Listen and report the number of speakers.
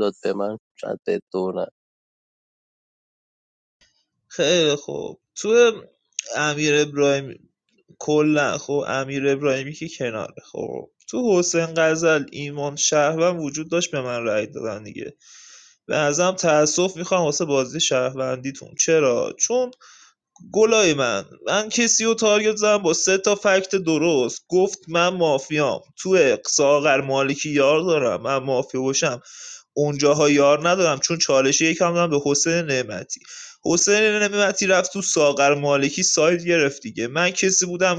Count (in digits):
2